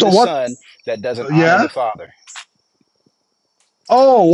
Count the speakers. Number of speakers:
2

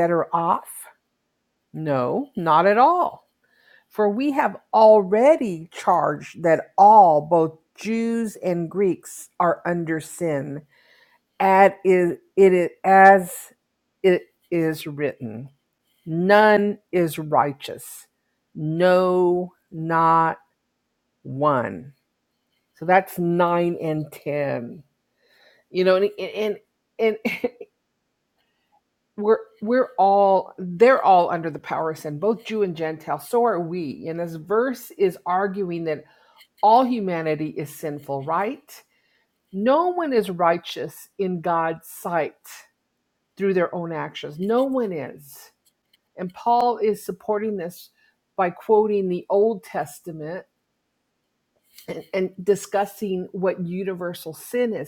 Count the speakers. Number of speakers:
1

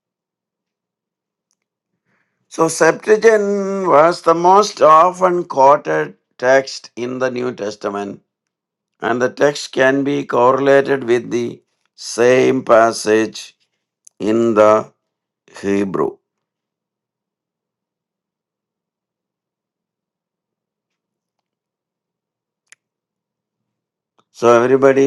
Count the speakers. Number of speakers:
1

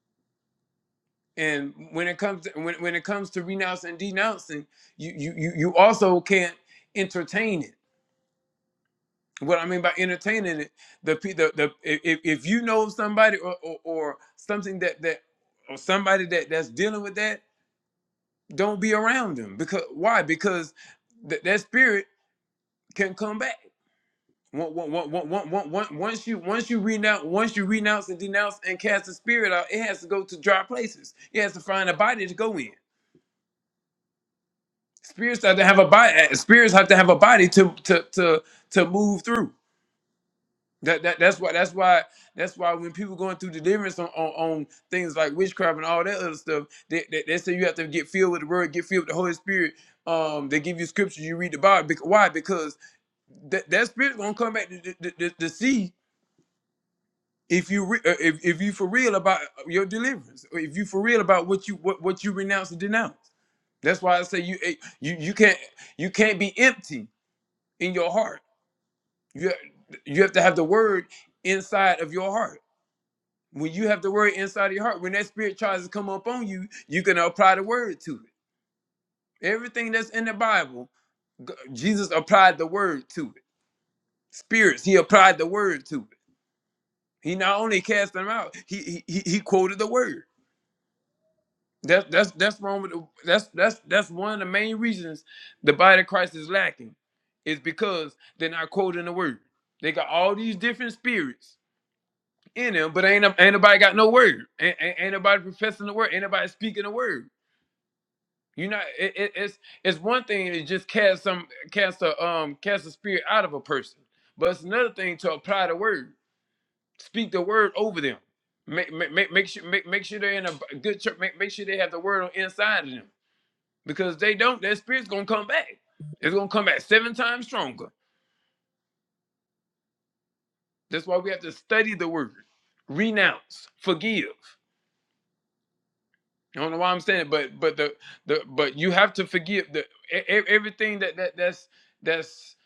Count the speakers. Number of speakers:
1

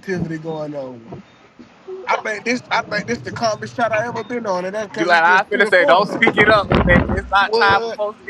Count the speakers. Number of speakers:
2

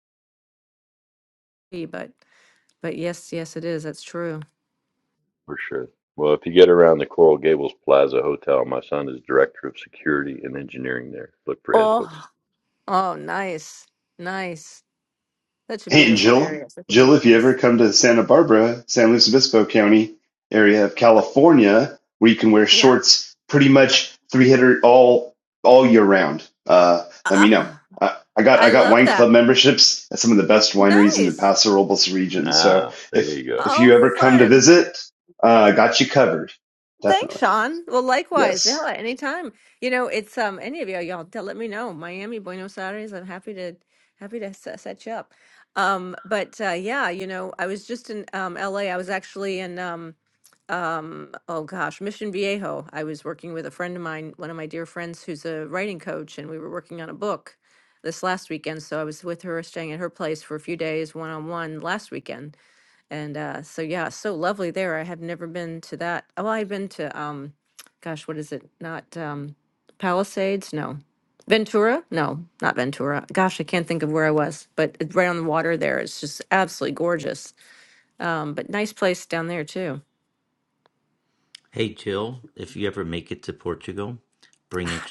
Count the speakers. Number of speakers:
4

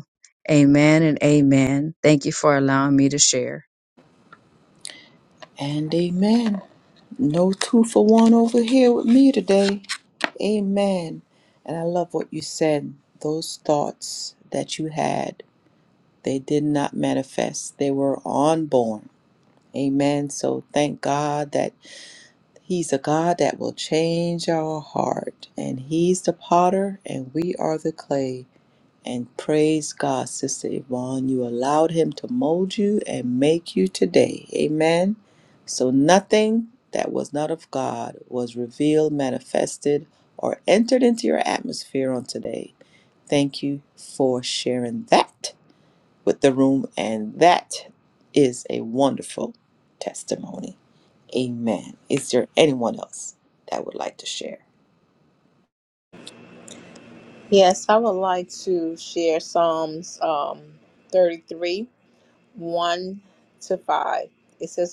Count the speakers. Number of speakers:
3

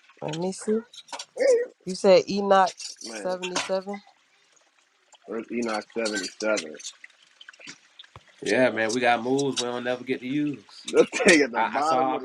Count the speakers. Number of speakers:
3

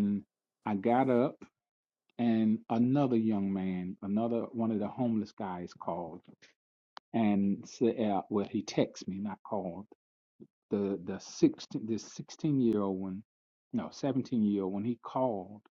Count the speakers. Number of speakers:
1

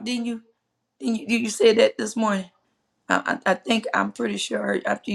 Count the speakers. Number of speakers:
1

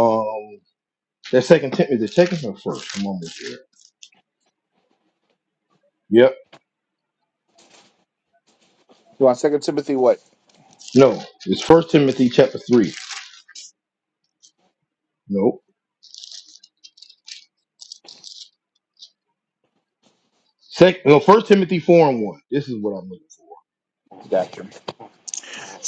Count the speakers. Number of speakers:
2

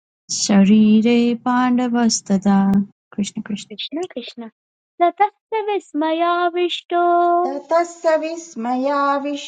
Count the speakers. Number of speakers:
3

